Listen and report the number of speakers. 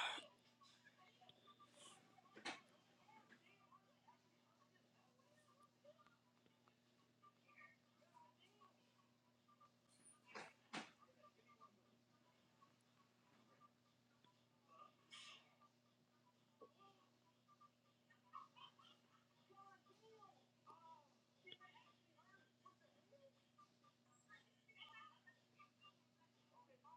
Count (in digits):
0